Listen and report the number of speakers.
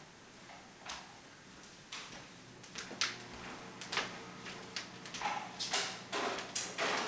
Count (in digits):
0